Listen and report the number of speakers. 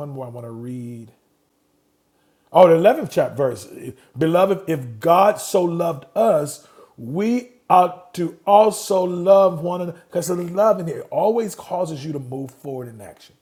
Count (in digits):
1